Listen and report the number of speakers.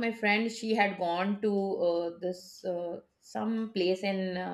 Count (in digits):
1